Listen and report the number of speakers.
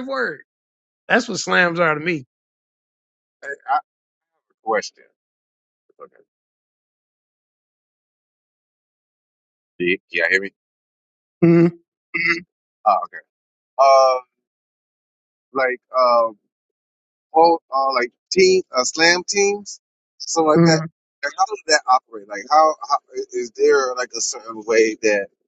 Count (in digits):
2